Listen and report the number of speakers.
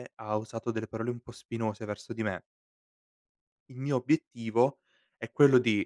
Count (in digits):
1